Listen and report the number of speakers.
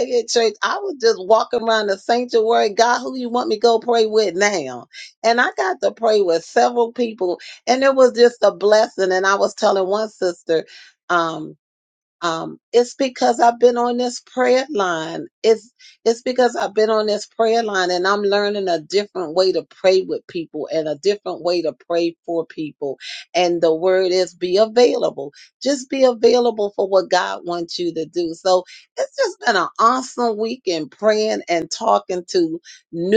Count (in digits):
1